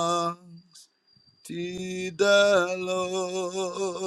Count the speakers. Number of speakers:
1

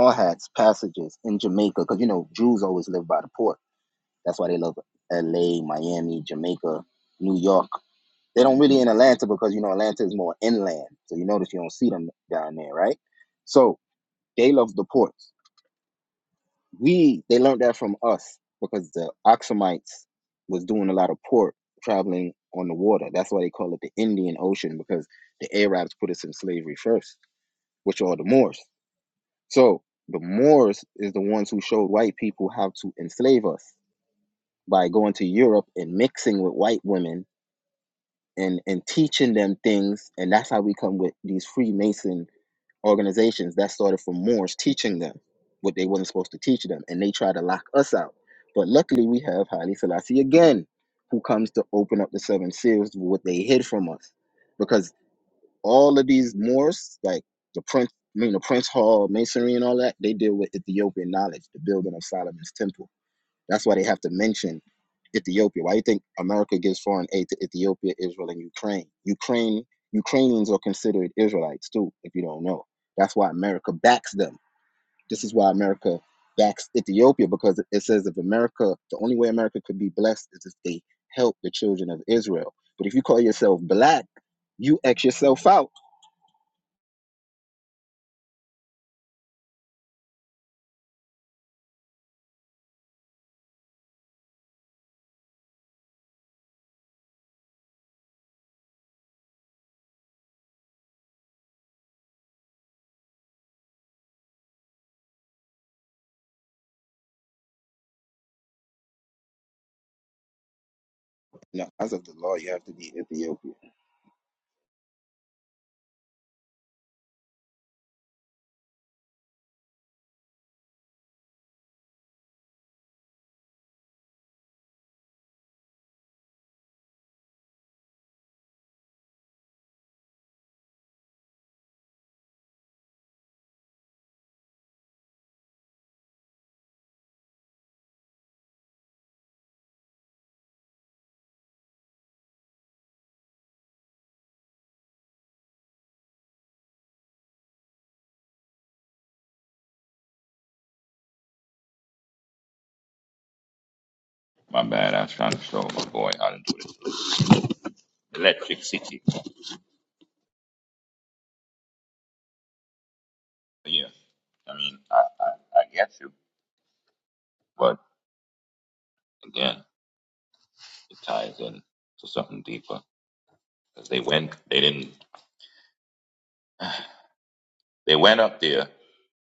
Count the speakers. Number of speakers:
2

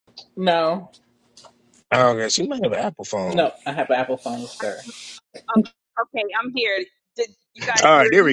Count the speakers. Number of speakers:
3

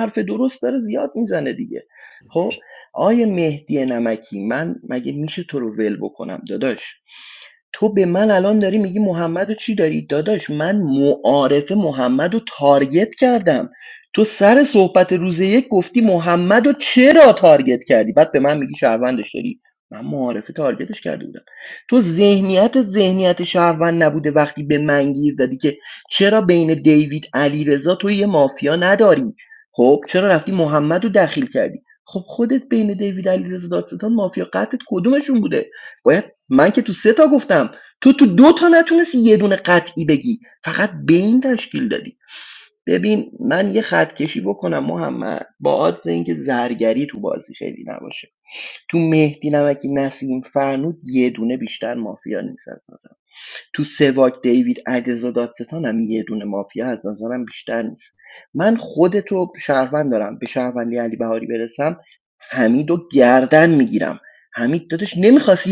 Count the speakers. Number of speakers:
1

